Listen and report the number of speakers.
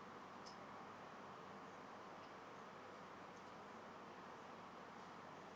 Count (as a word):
zero